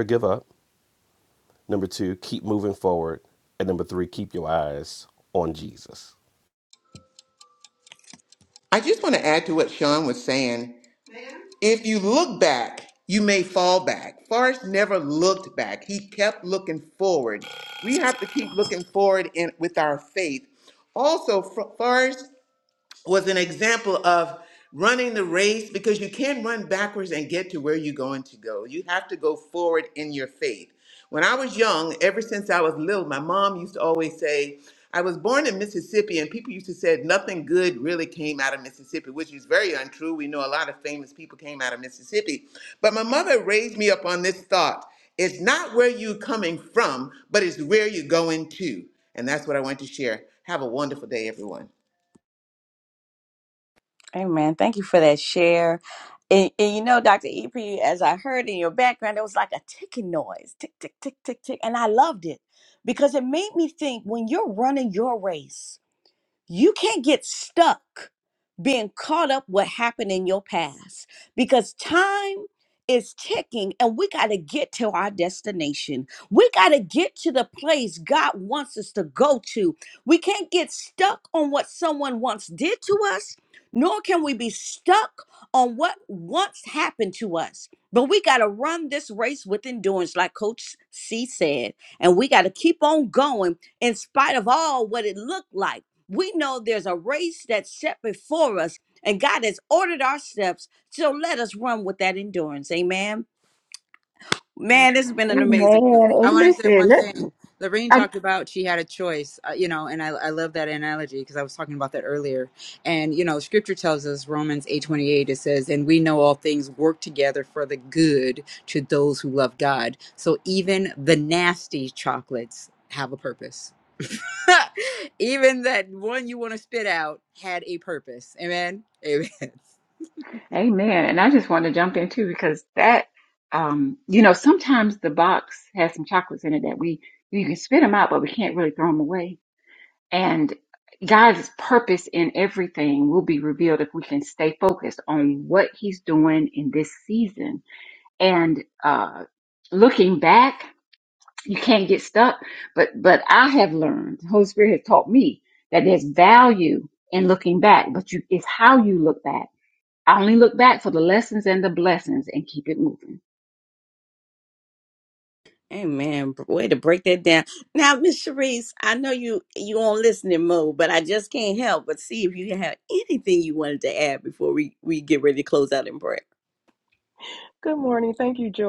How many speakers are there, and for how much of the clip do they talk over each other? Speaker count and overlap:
six, about 1%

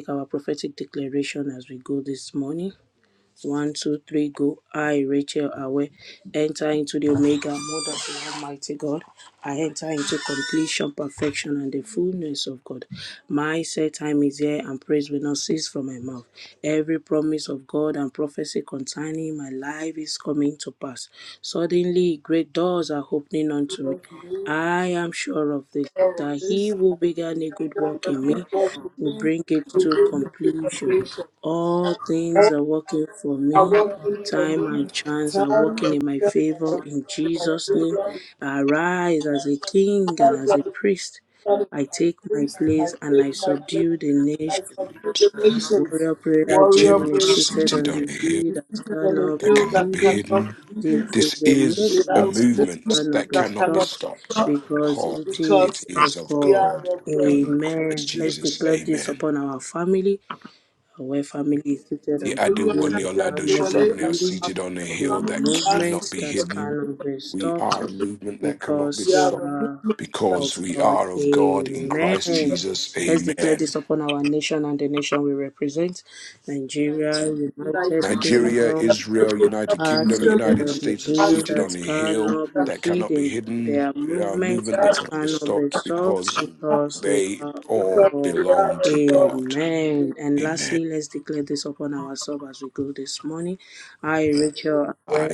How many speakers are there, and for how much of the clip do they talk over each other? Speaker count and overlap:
three, about 42%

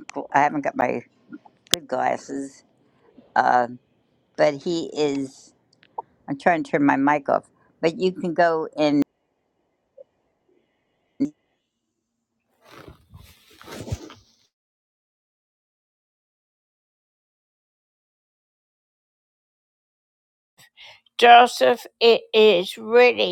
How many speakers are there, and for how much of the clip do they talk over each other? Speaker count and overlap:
two, no overlap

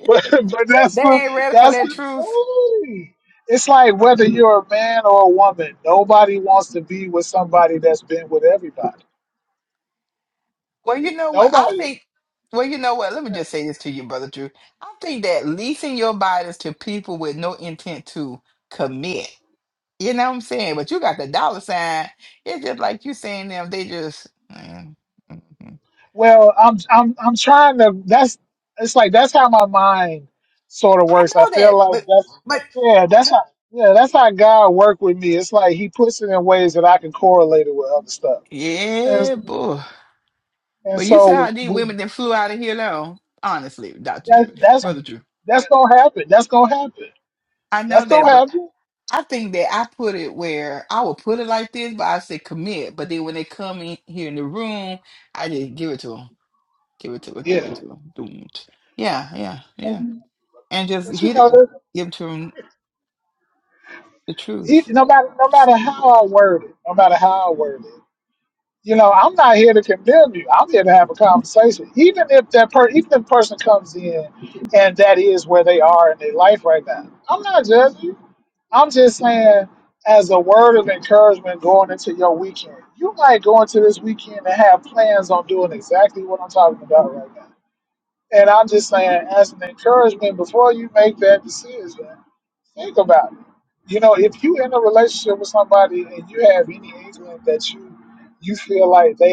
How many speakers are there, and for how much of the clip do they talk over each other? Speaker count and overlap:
two, about 5%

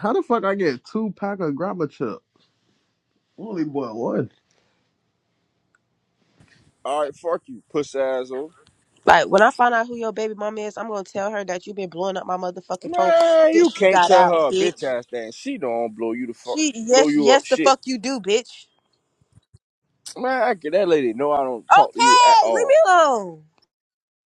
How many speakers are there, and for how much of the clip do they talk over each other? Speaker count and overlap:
three, about 14%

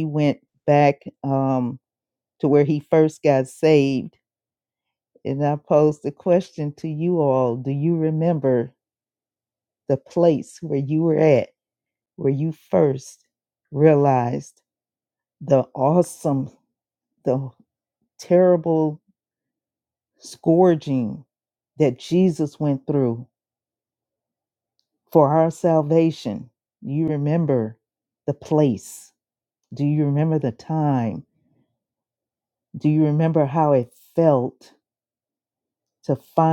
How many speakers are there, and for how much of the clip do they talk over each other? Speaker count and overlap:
one, no overlap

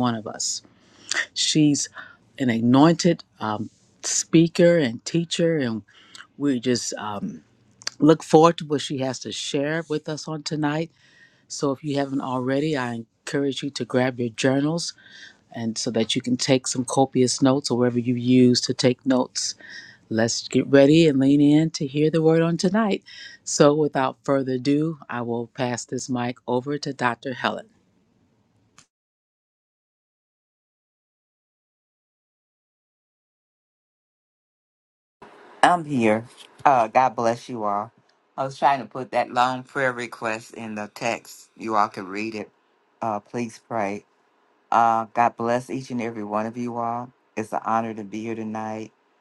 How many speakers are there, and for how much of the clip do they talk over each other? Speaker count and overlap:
two, no overlap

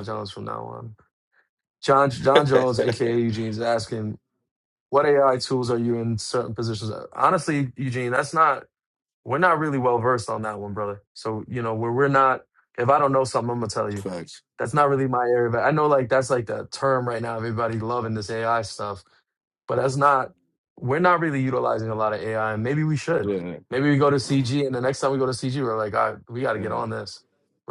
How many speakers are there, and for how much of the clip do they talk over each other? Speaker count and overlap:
two, about 3%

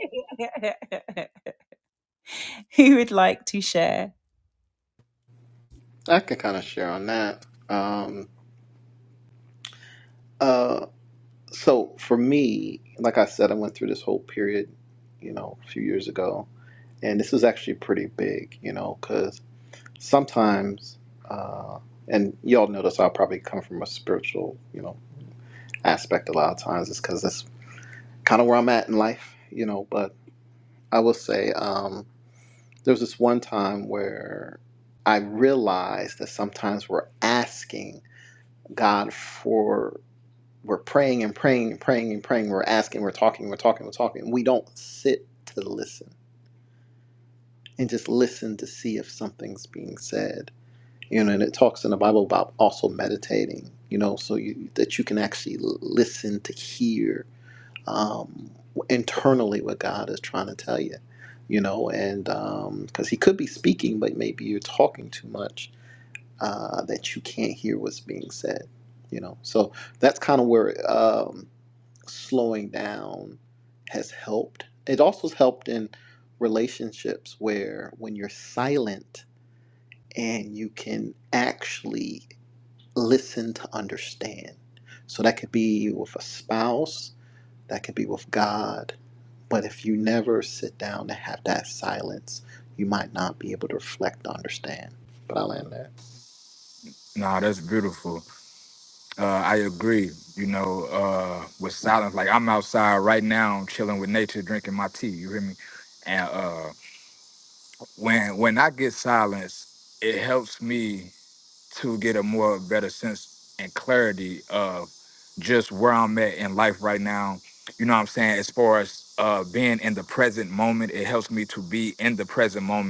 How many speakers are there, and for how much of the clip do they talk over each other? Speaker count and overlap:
three, no overlap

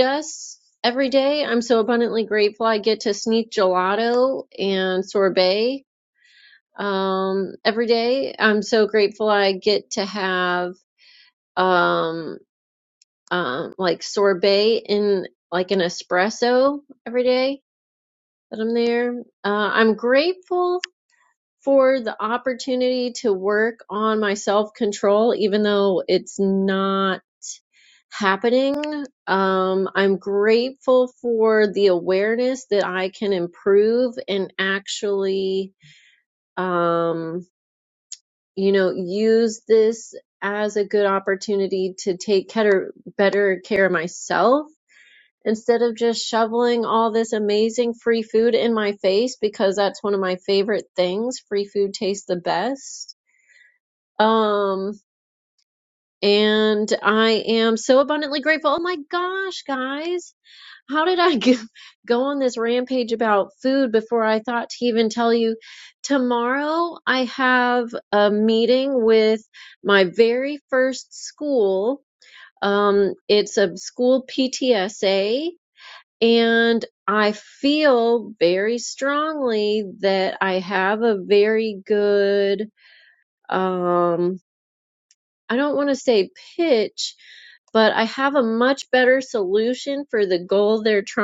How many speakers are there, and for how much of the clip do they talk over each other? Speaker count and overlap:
one, no overlap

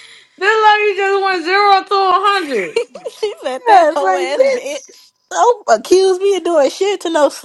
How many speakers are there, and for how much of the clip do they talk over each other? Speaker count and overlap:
three, about 13%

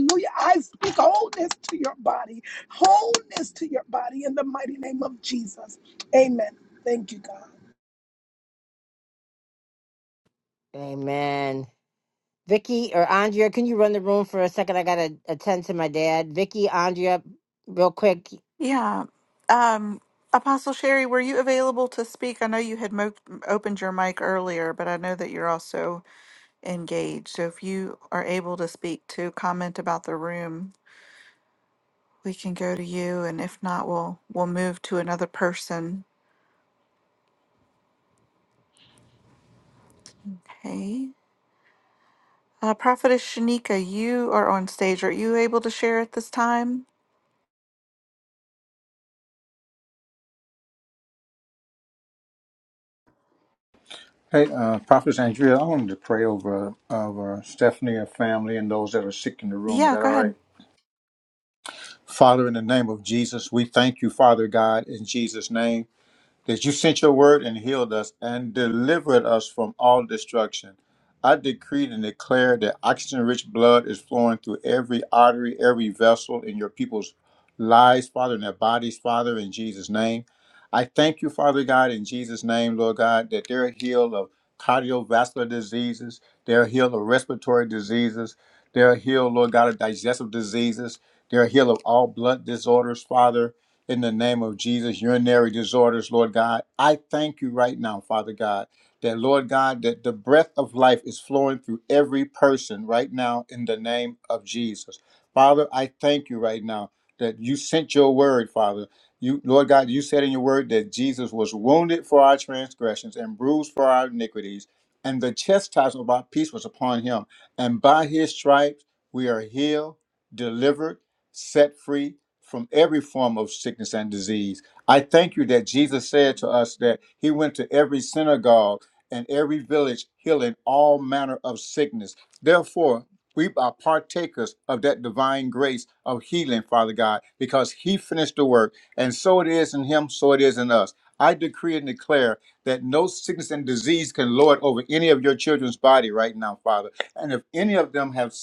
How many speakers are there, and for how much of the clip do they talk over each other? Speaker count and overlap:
four, under 1%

